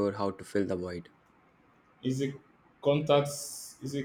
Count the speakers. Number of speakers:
two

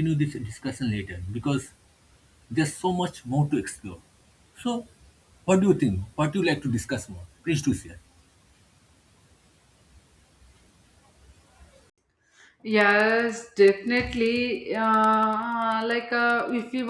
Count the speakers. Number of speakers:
two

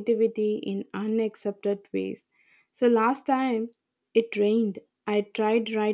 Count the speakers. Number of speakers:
one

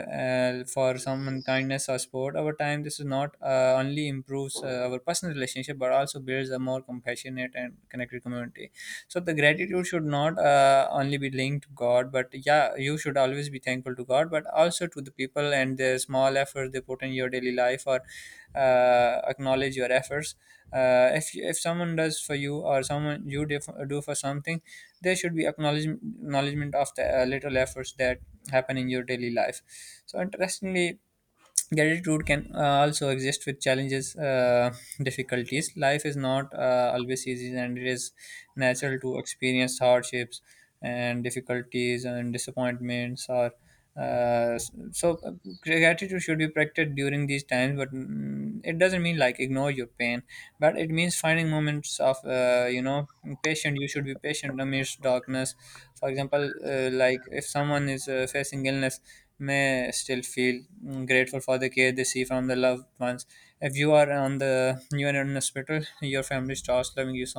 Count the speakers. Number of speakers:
one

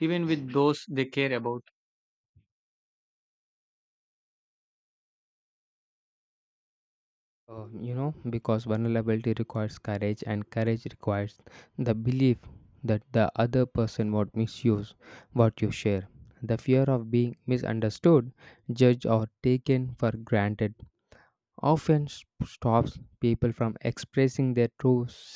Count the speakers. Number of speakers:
two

